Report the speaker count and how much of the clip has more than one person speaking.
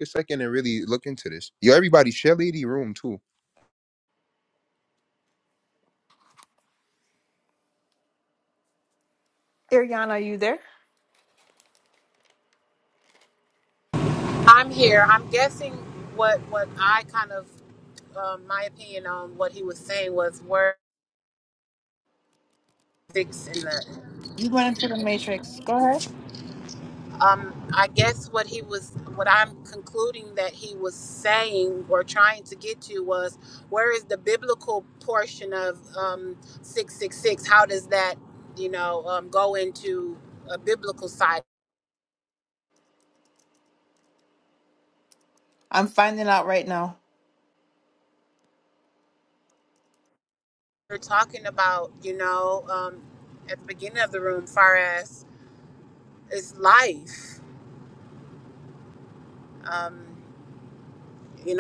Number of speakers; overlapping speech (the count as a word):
three, no overlap